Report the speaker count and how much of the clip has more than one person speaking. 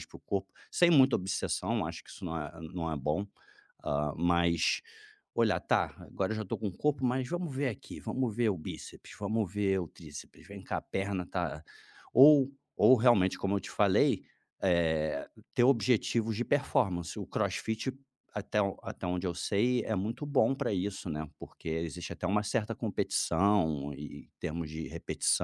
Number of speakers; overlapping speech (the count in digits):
1, no overlap